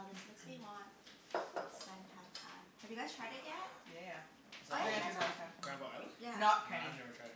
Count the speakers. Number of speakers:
three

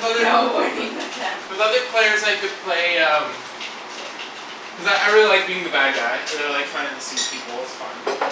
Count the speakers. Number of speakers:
two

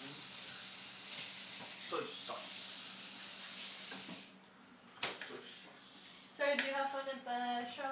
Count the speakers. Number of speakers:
two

